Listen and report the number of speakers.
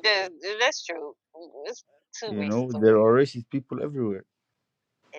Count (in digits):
2